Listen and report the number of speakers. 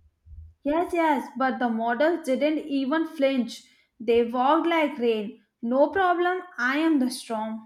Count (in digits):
1